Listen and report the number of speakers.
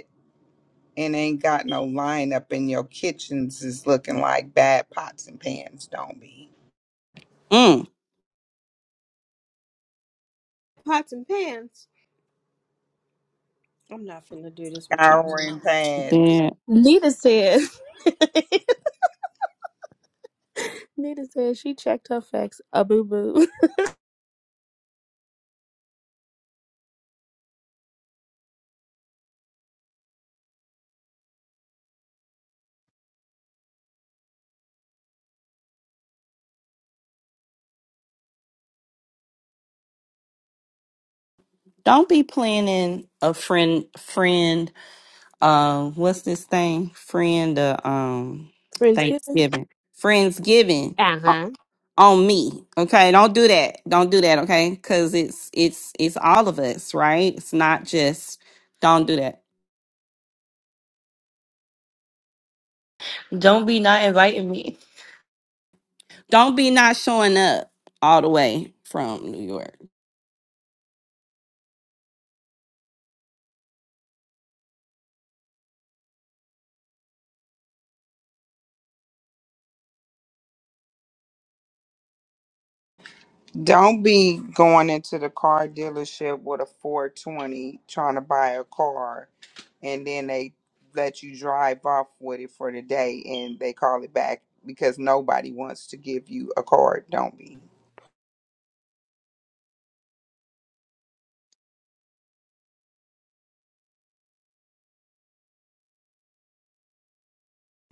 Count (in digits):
5